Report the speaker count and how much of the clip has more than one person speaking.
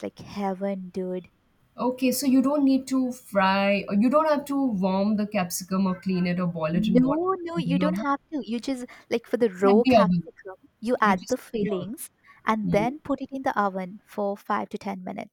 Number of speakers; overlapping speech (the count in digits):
2, about 16%